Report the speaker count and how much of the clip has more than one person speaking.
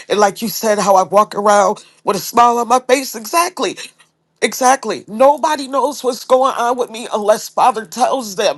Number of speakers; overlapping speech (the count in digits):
1, no overlap